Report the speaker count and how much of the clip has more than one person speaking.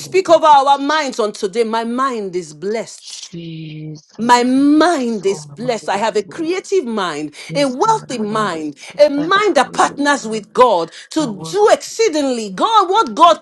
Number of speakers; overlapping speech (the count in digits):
2, about 45%